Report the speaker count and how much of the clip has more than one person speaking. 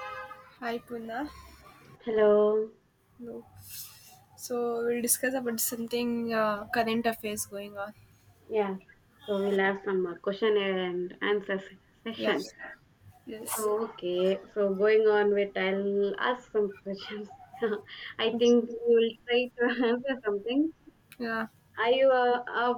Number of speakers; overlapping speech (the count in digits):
2, about 1%